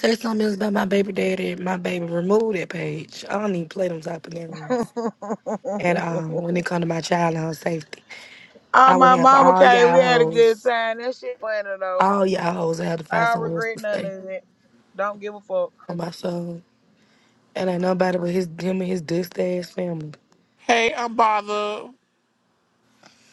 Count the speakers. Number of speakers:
3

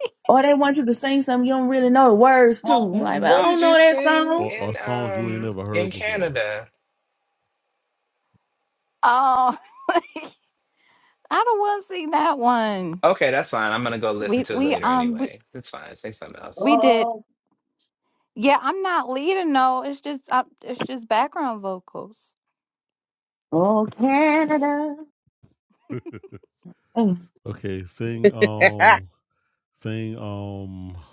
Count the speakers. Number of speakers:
4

